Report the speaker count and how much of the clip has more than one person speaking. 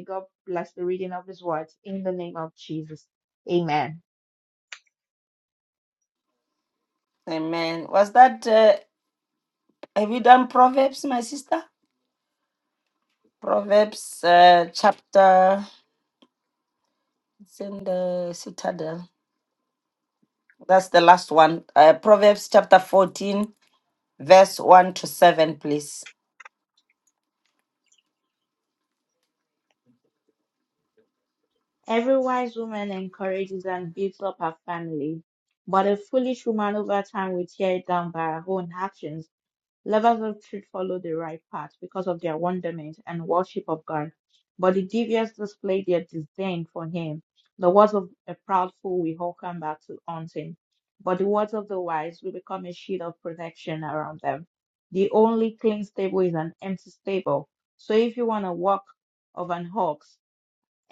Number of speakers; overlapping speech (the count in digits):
2, no overlap